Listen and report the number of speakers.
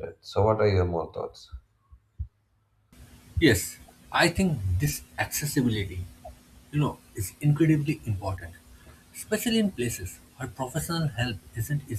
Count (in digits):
2